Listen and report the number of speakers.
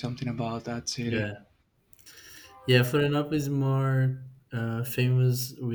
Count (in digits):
2